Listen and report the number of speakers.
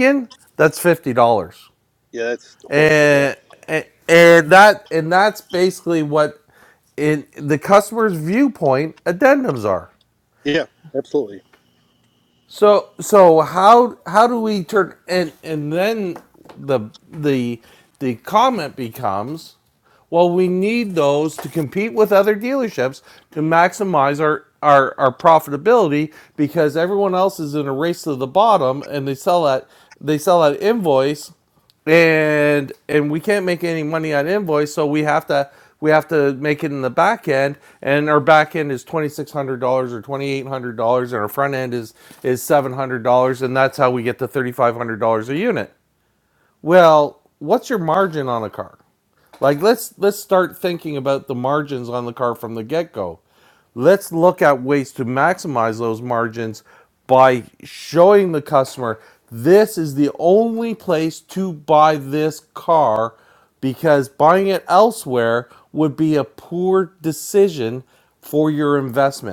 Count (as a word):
two